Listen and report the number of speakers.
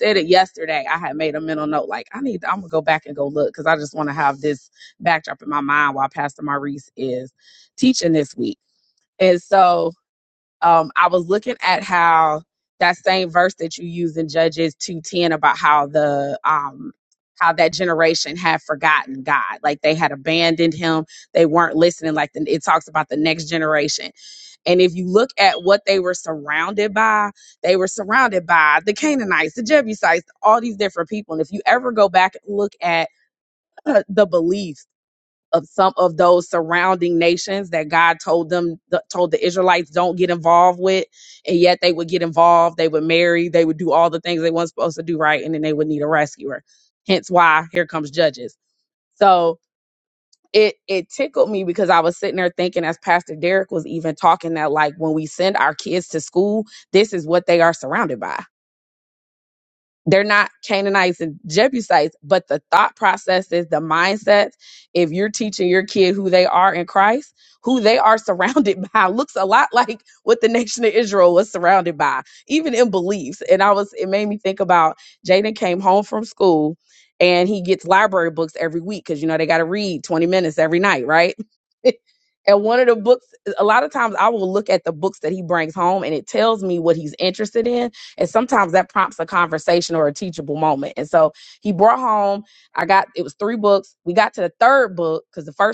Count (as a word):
one